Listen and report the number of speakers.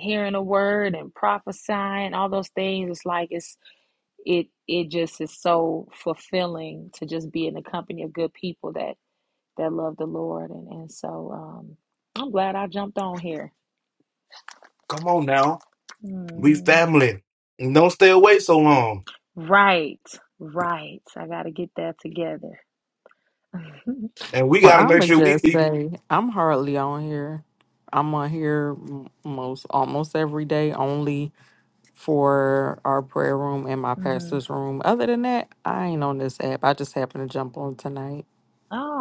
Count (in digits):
3